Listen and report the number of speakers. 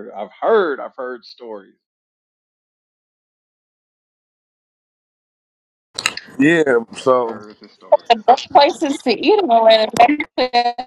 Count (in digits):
3